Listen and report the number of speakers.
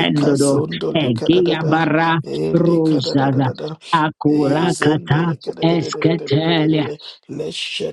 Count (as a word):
two